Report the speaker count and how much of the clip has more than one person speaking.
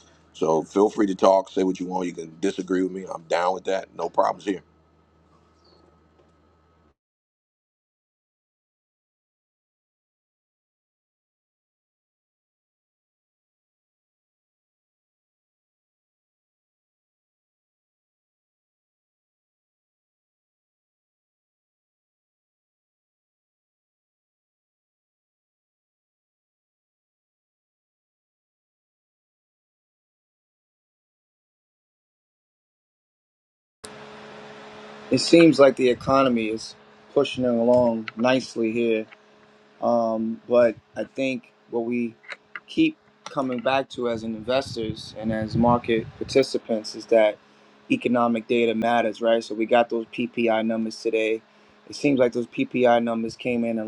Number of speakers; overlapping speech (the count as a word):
two, no overlap